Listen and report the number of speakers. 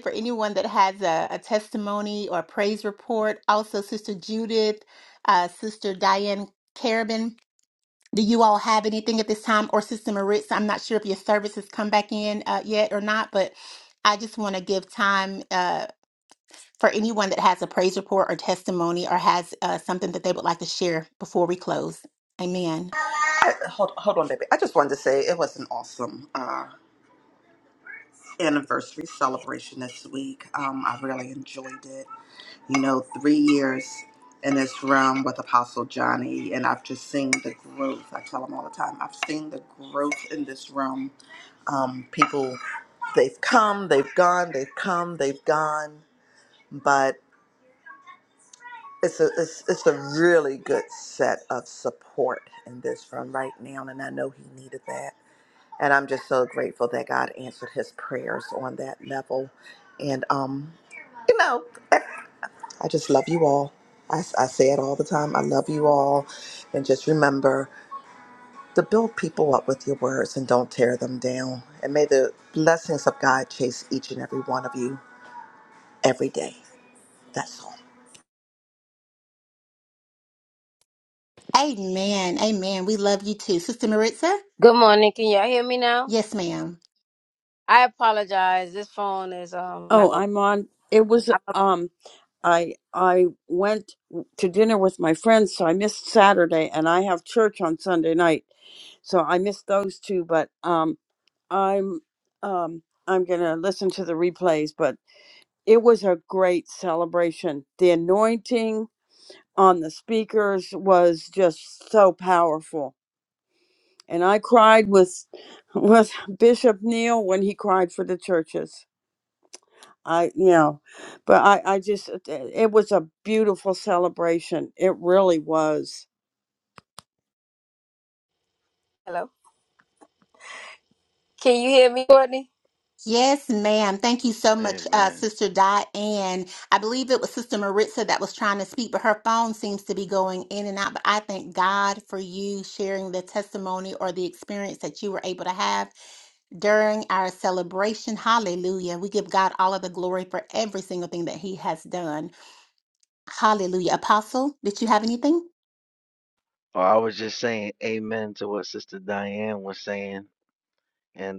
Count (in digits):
5